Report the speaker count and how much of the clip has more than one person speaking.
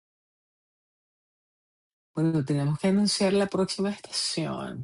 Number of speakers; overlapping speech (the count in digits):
1, no overlap